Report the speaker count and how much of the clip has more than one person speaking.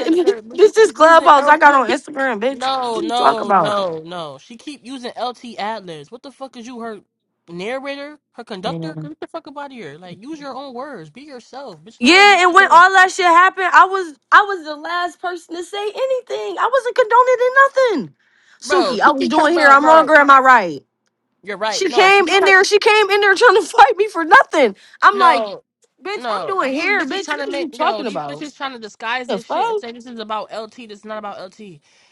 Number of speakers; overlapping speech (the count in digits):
2, about 29%